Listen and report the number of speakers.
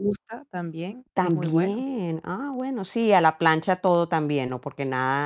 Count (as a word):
two